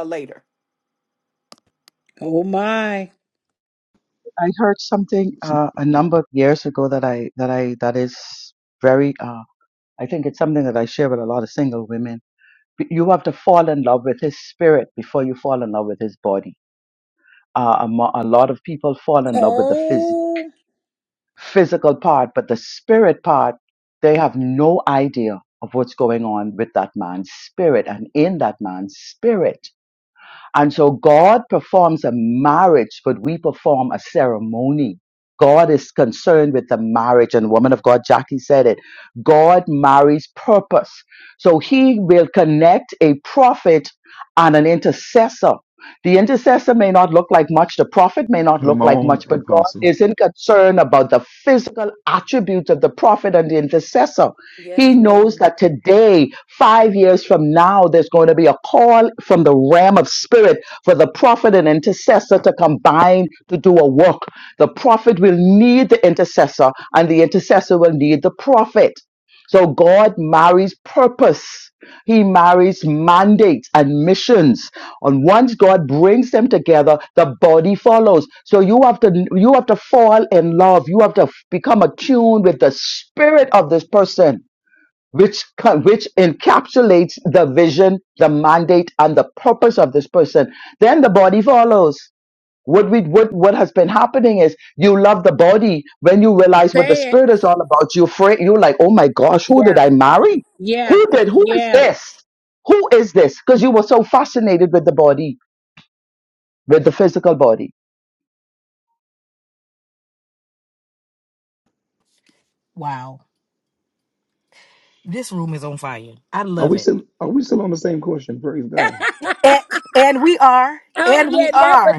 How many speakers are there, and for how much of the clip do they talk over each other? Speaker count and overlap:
five, about 4%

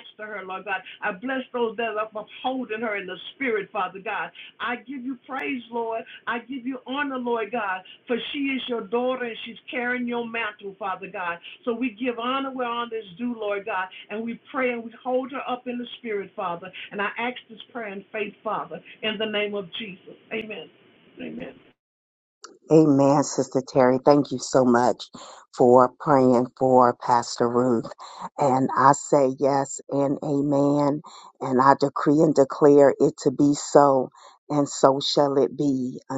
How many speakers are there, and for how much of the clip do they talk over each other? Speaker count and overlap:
two, no overlap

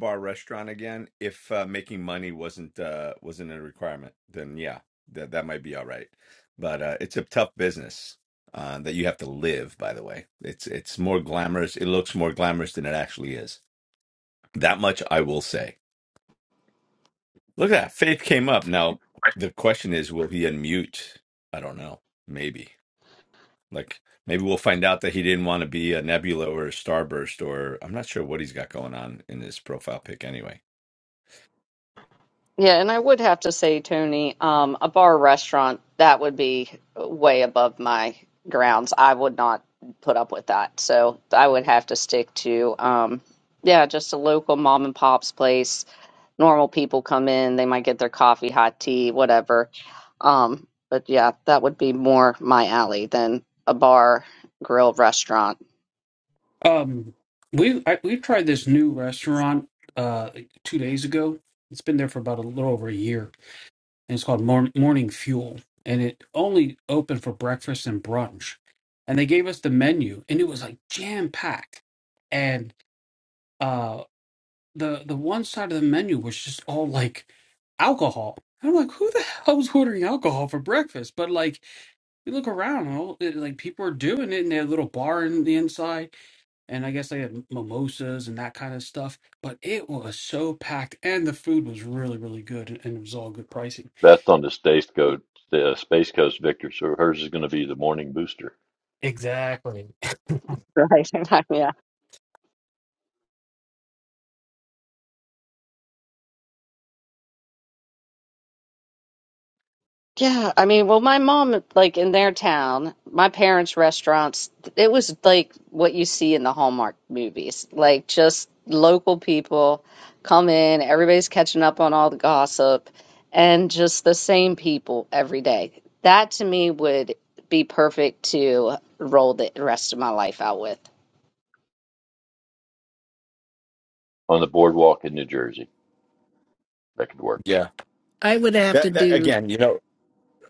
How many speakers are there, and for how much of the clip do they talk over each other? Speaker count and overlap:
five, under 1%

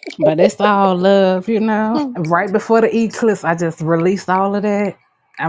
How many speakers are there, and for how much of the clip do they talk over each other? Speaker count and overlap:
one, no overlap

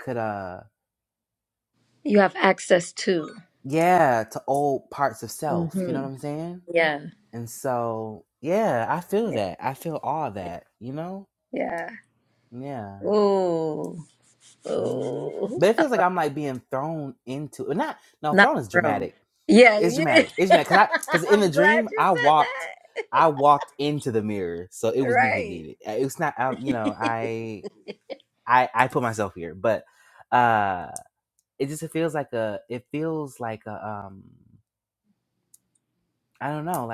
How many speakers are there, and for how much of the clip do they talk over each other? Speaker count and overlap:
two, about 13%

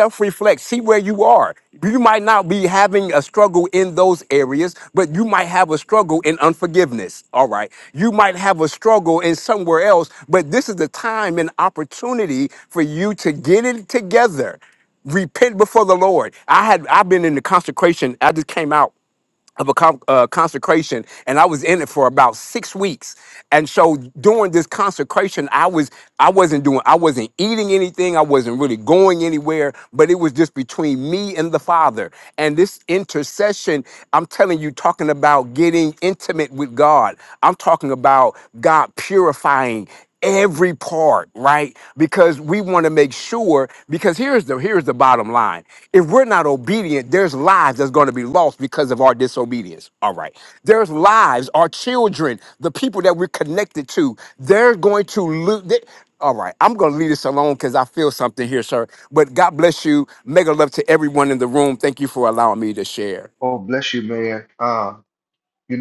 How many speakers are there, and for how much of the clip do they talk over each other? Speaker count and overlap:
two, no overlap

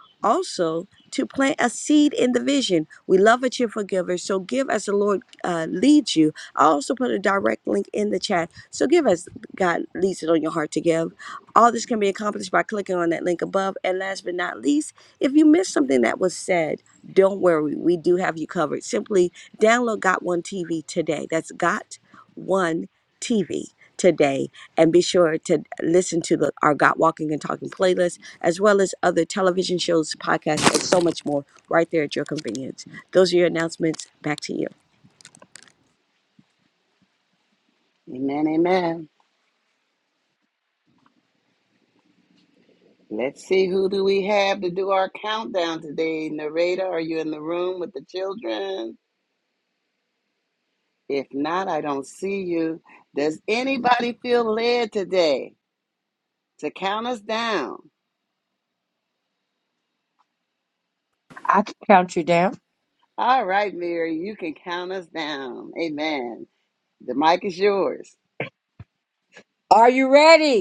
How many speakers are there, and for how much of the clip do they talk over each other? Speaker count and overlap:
three, no overlap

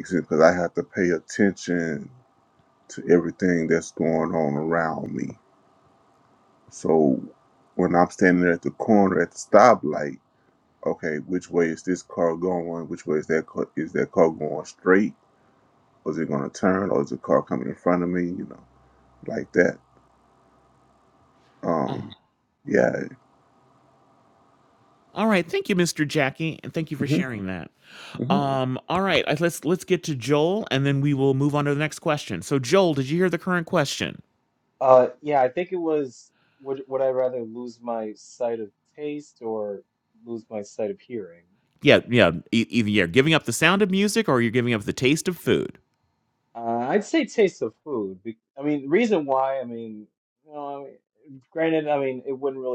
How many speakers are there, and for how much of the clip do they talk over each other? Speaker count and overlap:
three, about 1%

